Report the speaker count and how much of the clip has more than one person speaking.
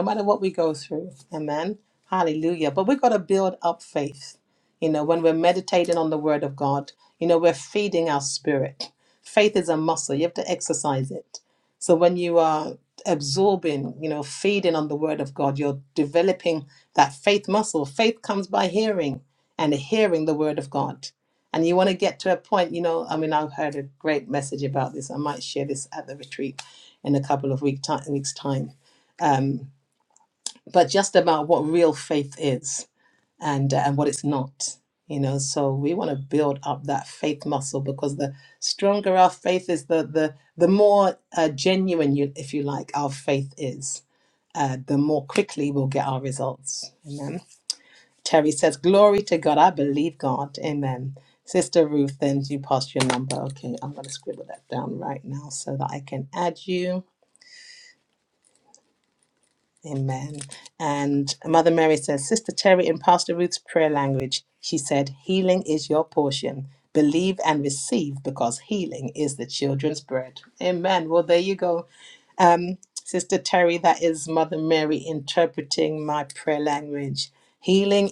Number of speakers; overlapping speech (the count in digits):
1, no overlap